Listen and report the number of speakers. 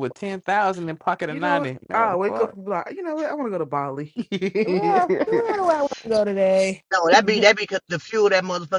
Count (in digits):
4